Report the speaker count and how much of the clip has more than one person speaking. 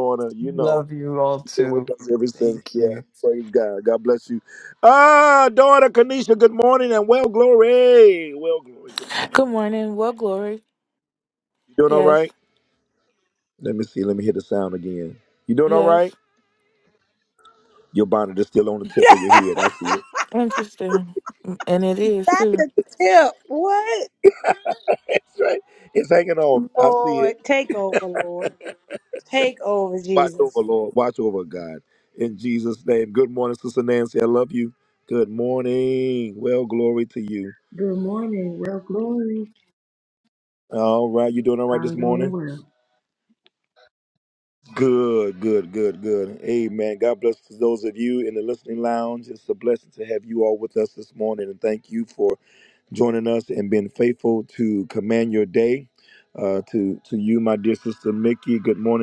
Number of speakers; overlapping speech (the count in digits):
5, about 7%